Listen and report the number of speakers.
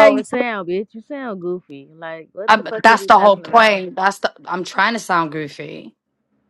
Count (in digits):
2